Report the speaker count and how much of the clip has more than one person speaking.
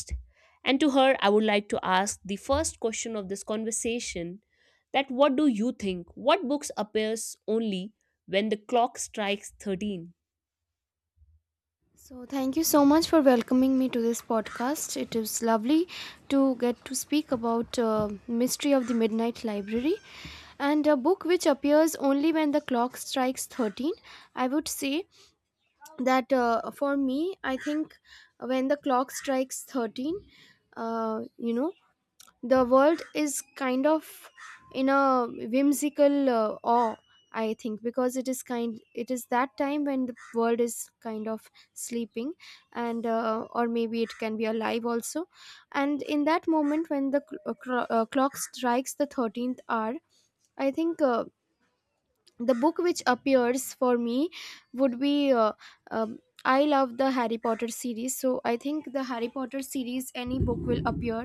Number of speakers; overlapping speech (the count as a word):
two, no overlap